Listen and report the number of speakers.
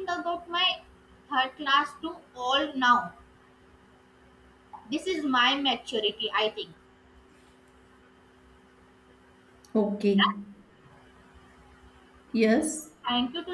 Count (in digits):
2